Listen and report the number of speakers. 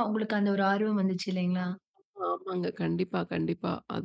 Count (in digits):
2